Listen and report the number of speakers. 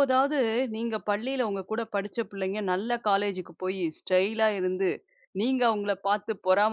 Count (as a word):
one